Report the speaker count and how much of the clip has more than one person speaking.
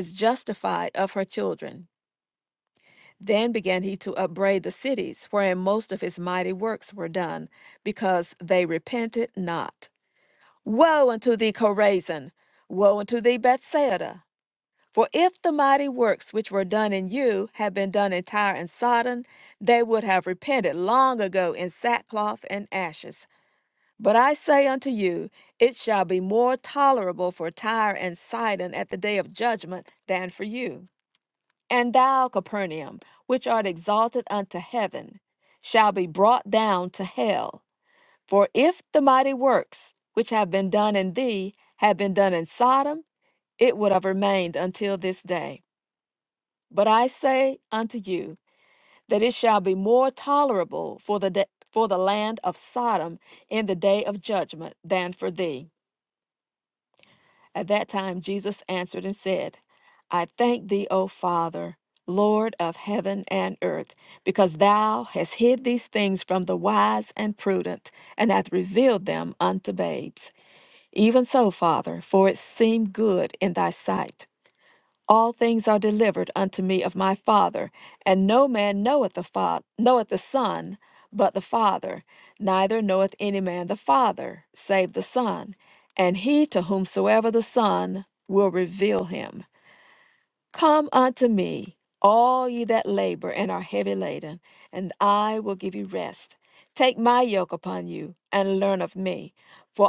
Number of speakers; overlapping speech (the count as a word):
one, no overlap